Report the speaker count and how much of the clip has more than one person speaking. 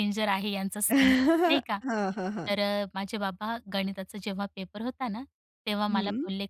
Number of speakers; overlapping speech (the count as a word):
two, about 7%